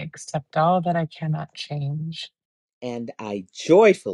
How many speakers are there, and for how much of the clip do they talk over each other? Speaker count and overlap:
2, no overlap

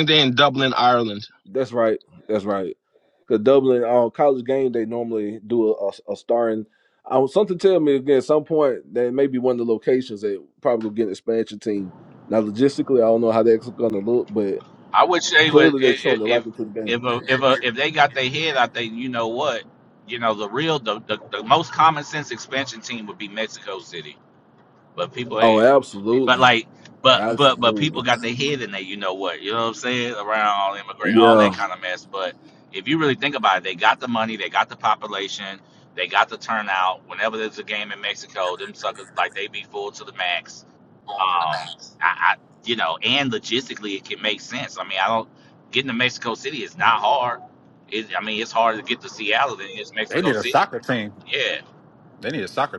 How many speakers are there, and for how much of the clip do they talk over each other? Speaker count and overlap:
4, about 6%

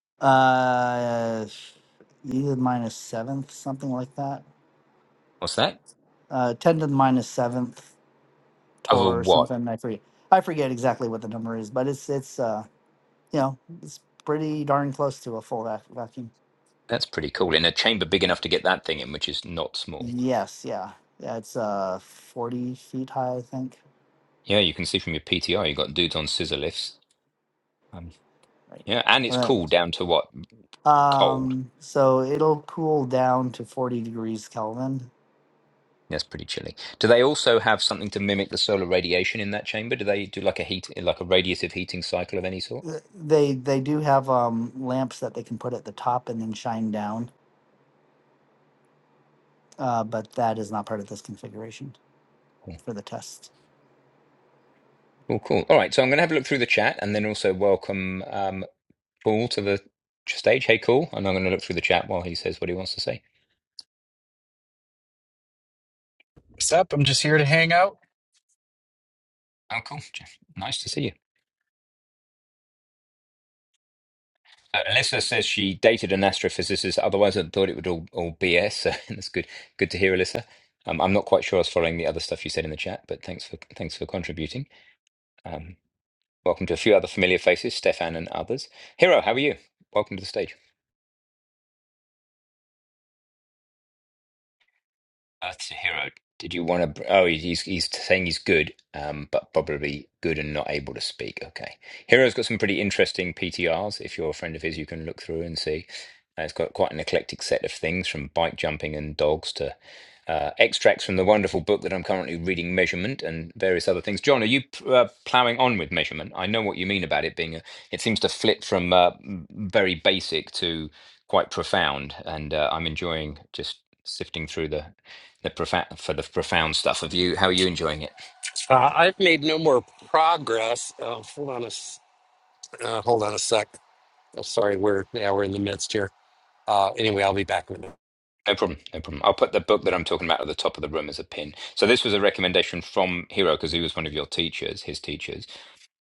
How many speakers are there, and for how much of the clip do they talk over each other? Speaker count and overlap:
4, about 1%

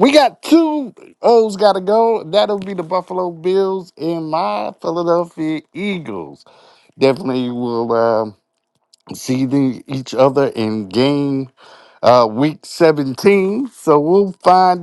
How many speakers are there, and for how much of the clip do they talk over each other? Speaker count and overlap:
1, no overlap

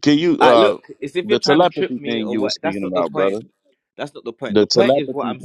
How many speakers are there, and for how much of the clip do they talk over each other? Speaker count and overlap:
2, about 63%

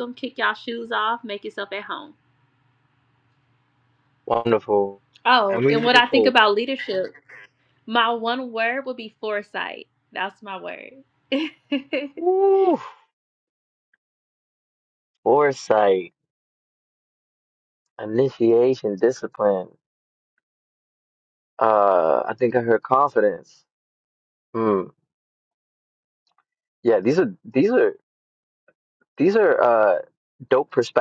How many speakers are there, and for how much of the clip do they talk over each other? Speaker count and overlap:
2, about 3%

